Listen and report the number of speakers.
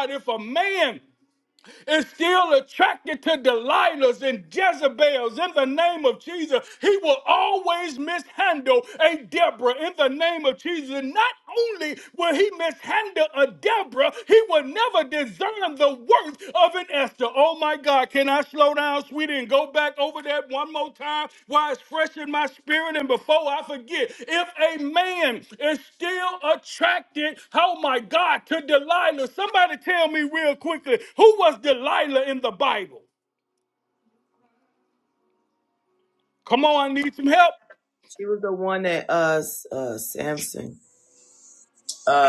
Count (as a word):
two